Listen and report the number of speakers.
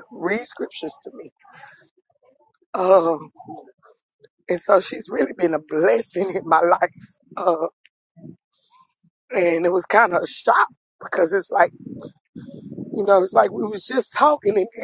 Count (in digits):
1